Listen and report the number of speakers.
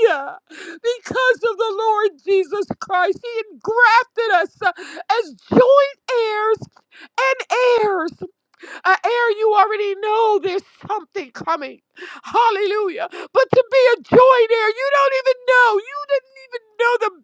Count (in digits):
1